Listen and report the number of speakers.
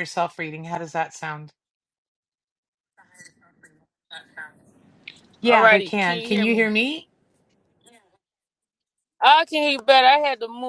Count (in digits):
2